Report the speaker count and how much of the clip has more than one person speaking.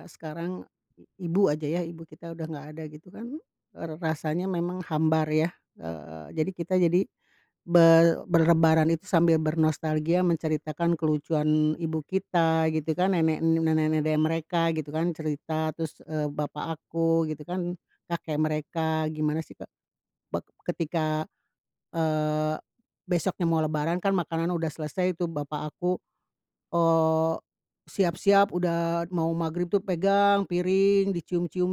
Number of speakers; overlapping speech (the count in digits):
1, no overlap